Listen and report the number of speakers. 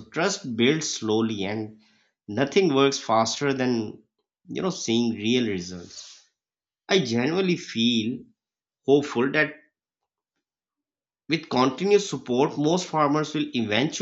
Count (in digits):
1